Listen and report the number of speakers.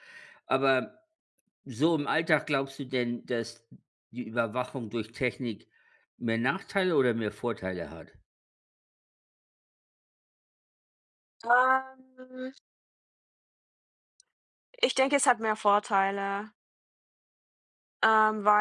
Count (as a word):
two